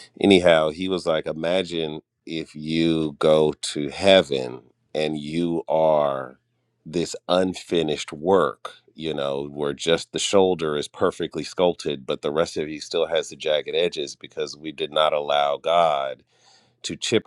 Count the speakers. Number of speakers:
one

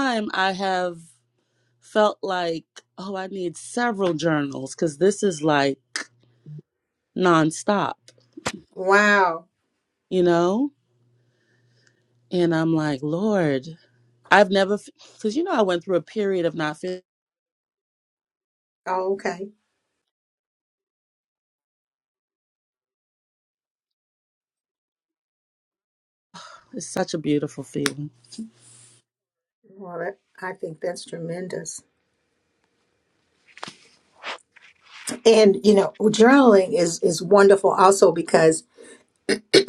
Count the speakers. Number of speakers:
two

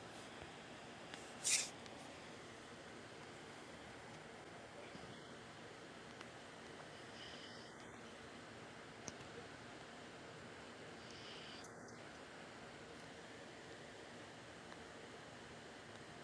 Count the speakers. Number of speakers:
zero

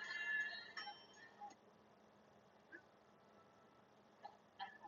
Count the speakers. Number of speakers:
zero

